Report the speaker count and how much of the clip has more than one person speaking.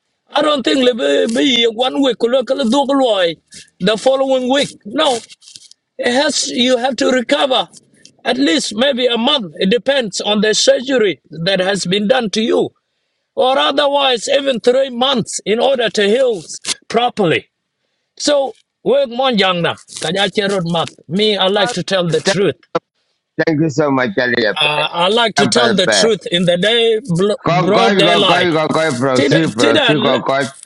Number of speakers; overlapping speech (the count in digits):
2, about 9%